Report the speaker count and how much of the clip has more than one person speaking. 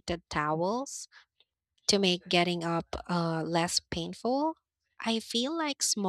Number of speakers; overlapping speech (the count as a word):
one, no overlap